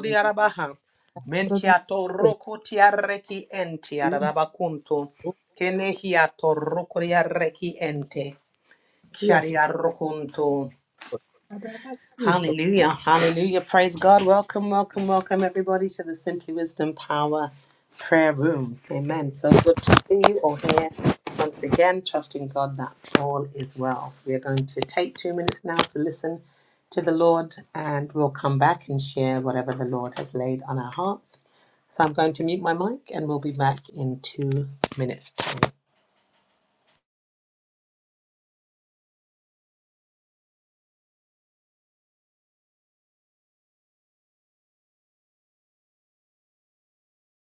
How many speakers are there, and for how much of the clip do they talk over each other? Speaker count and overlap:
2, about 3%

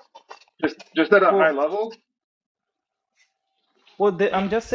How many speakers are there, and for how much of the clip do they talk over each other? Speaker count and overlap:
2, about 6%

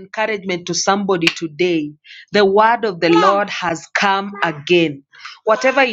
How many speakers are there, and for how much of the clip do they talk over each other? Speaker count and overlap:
1, no overlap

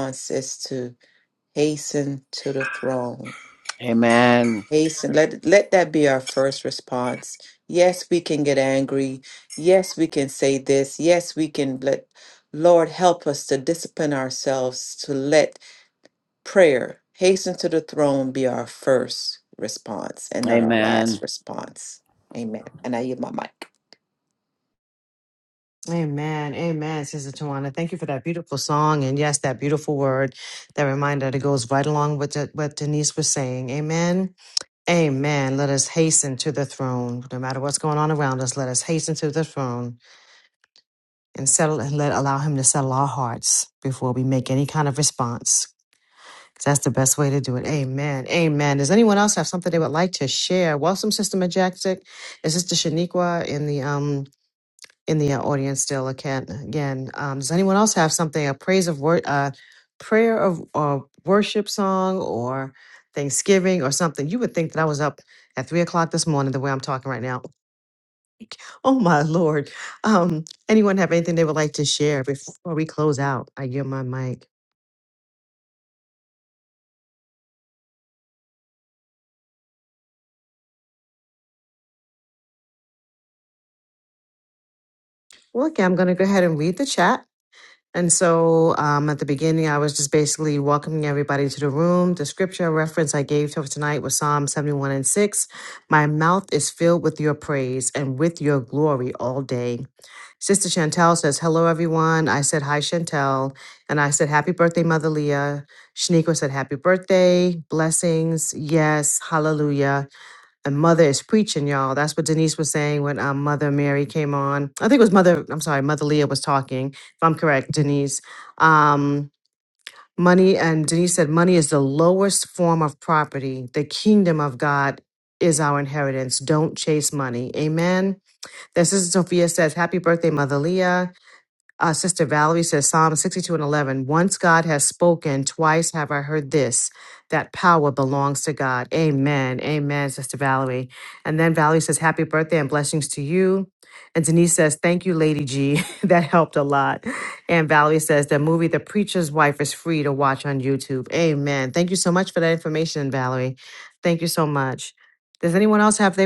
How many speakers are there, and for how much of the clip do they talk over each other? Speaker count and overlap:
3, under 1%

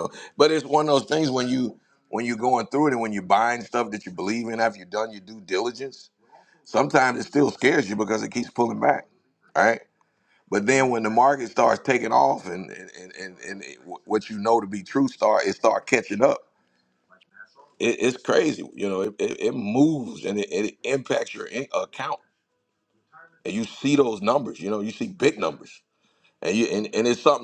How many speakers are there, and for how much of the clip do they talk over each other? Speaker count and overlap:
1, no overlap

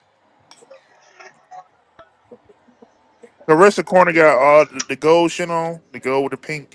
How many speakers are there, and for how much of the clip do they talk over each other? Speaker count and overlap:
1, no overlap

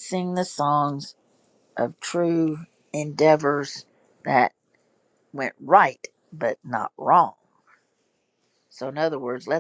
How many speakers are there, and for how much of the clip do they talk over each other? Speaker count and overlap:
1, no overlap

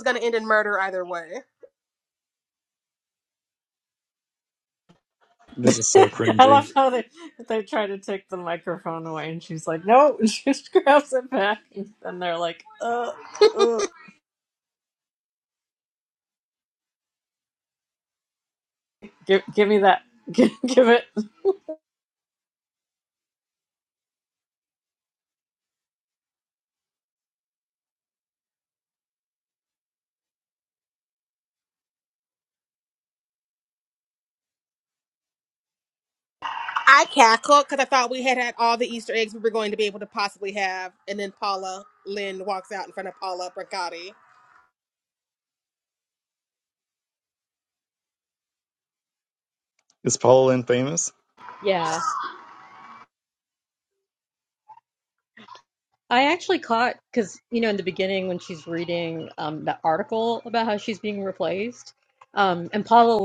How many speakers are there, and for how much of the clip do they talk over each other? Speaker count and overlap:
4, about 1%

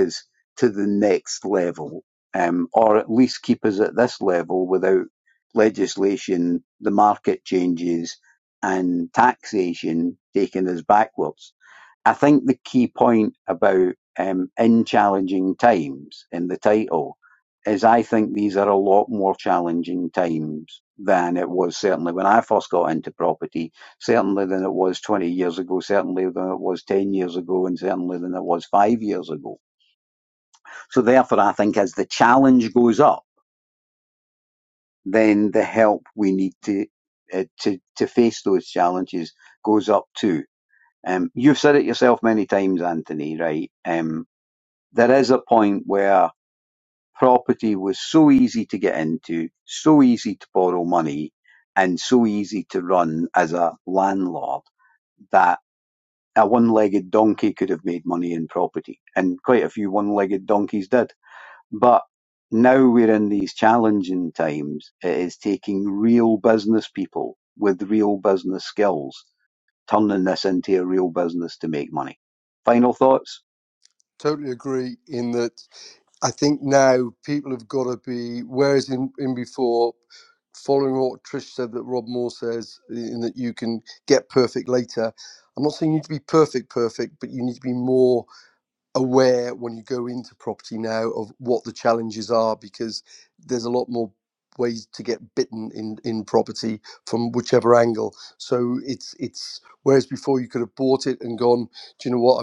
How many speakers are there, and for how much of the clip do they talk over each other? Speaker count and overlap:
2, no overlap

